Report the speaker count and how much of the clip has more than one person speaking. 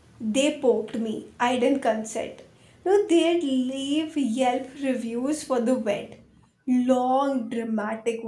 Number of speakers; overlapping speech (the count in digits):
1, no overlap